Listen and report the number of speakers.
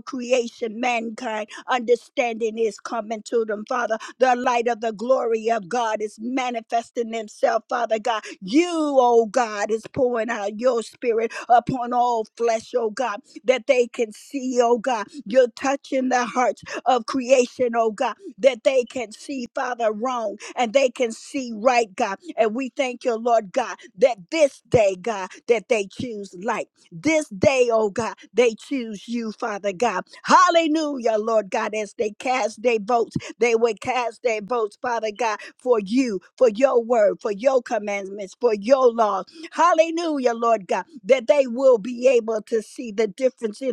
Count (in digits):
1